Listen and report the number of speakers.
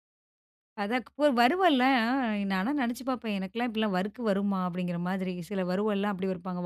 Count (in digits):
1